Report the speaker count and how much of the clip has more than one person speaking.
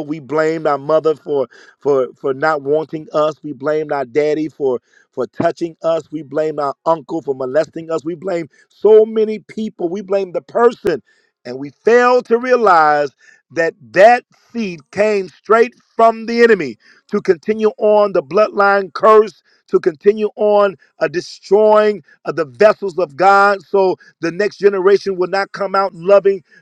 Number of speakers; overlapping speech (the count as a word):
one, no overlap